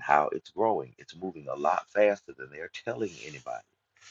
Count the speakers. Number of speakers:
1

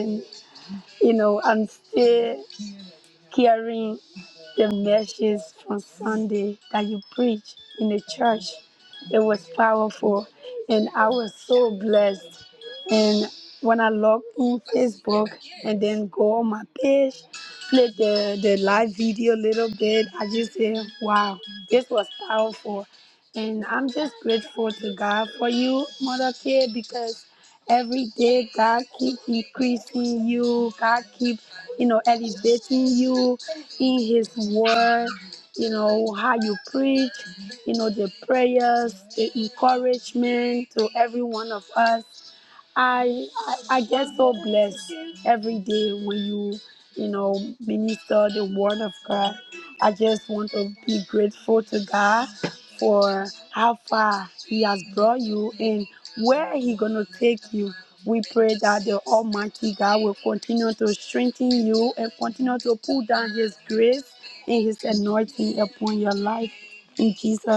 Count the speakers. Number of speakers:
1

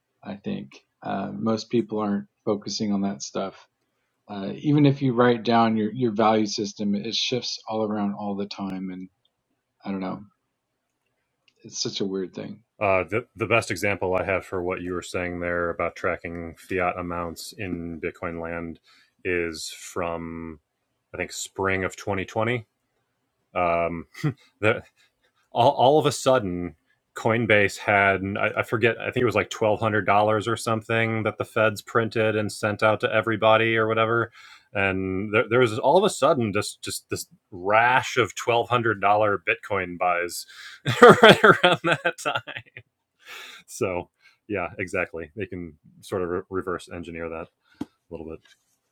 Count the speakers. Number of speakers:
2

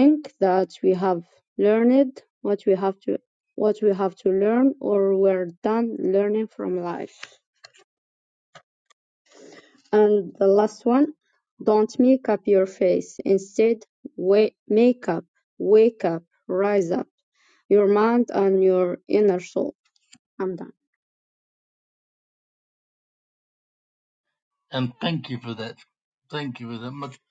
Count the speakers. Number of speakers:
2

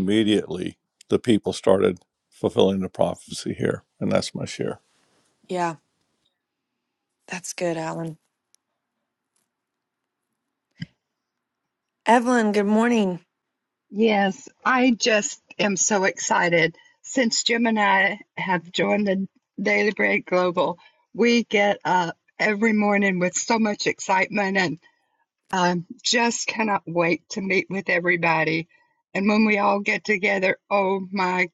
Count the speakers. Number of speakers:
3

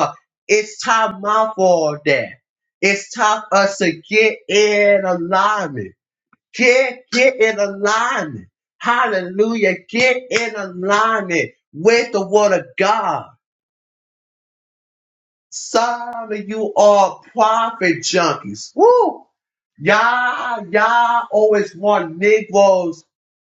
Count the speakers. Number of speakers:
1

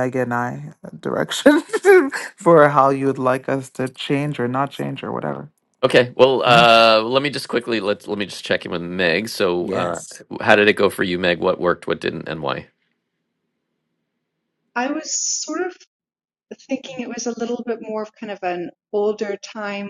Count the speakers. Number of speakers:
3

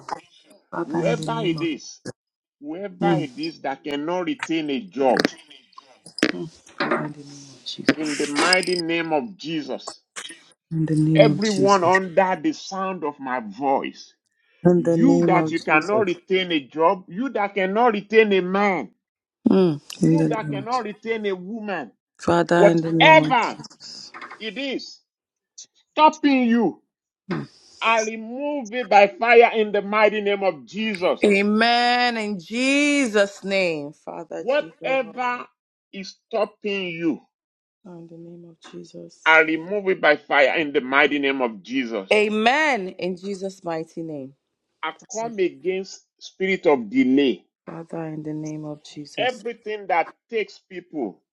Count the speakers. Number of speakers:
2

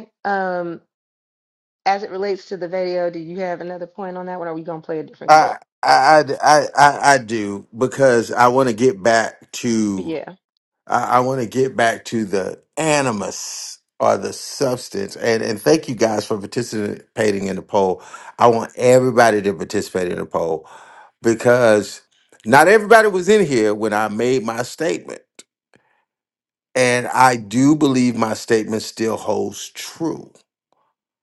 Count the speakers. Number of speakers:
2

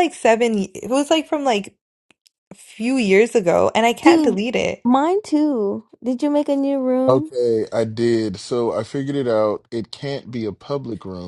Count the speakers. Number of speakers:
3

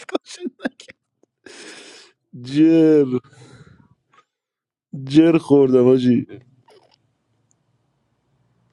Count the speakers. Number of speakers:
1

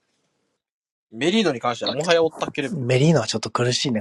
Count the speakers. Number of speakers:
2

